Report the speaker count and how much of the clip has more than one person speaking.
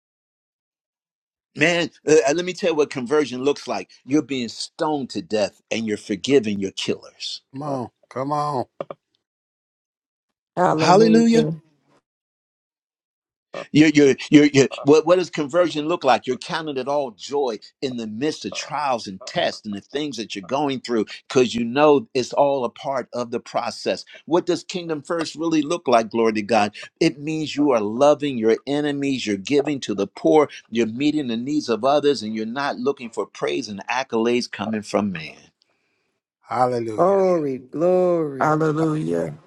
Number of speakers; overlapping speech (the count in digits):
4, about 2%